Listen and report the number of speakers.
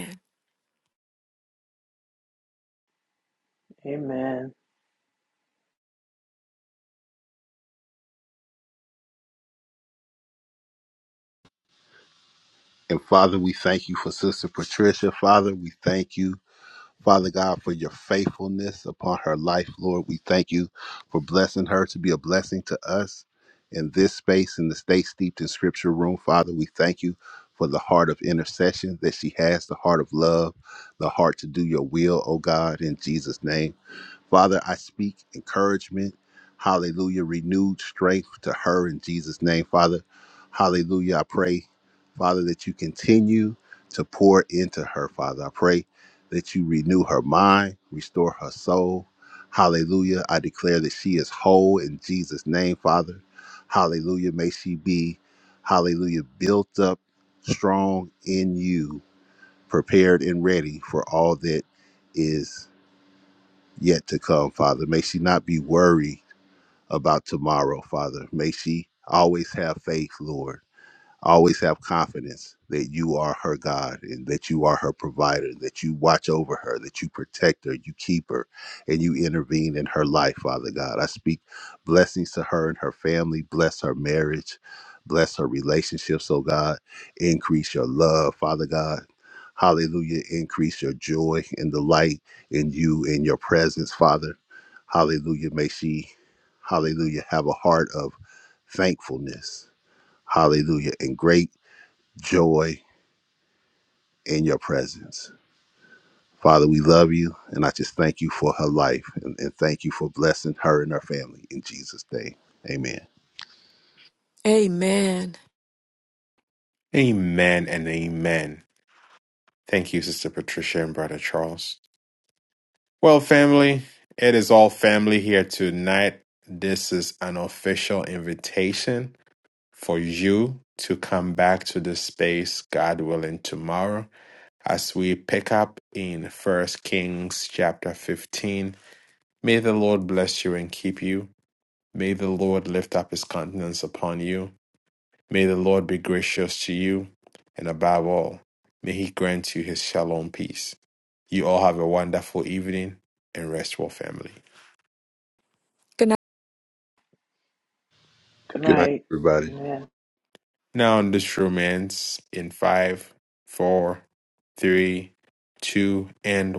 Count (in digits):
4